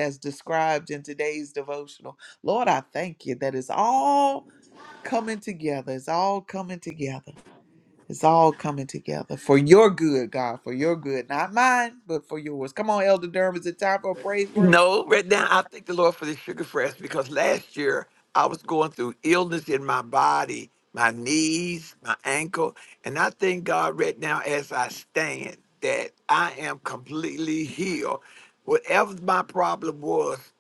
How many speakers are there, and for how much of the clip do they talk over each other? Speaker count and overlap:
two, about 1%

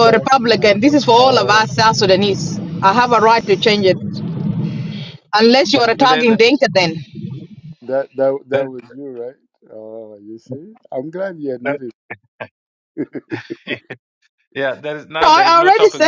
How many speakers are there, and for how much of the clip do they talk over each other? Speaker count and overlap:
three, about 20%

